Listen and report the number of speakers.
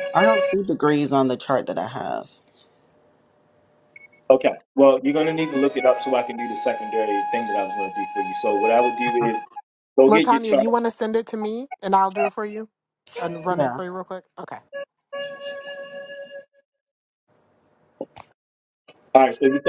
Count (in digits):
3